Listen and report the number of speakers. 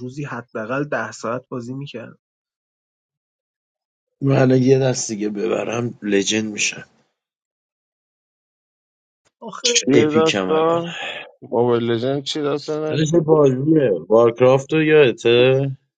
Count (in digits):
3